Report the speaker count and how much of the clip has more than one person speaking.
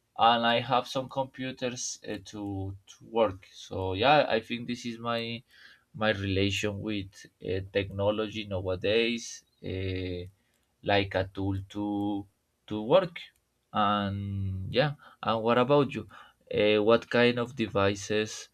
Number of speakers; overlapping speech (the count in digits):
1, no overlap